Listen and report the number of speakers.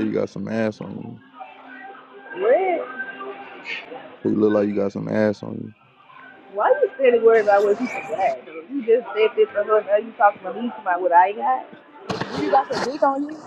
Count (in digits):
3